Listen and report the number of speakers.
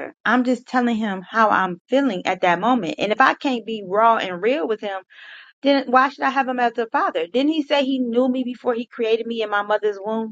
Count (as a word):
one